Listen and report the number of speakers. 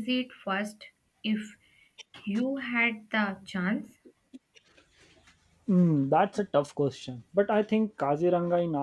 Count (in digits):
2